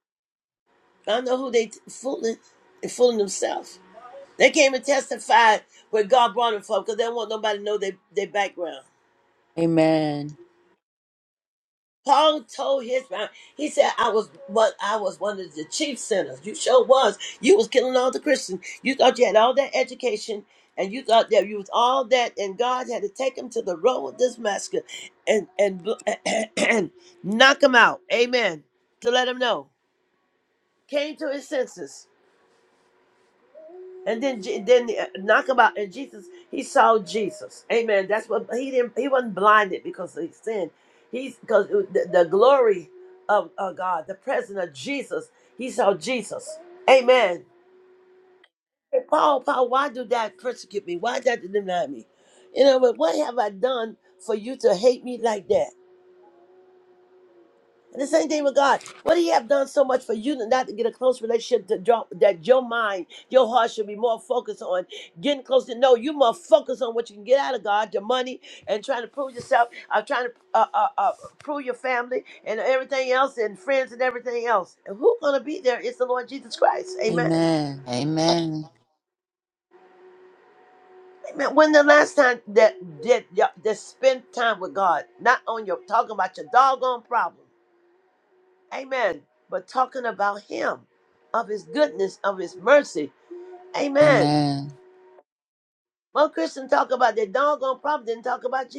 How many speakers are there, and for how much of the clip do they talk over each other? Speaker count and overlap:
two, about 1%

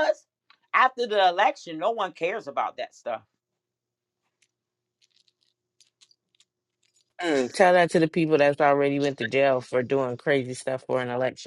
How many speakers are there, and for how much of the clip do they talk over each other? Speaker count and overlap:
two, no overlap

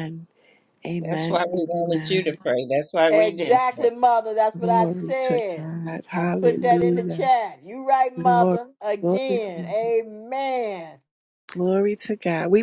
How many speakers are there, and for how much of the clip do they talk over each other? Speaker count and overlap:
three, about 43%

